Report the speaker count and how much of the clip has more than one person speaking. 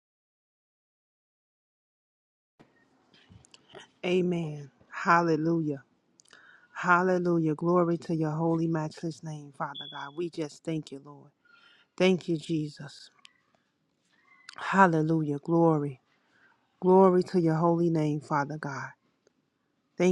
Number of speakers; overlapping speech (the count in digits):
1, no overlap